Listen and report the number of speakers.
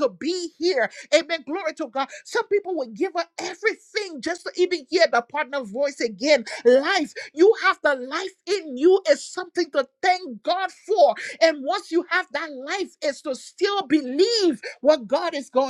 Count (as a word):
one